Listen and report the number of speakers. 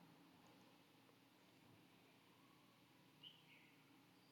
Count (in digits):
0